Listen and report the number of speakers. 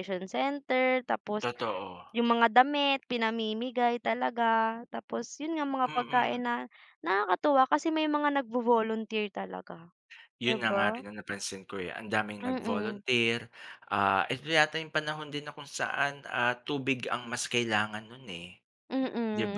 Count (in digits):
2